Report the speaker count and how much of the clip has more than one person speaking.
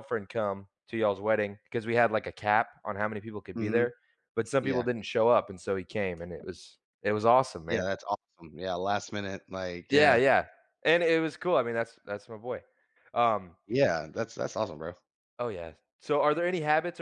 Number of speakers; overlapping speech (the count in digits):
2, about 6%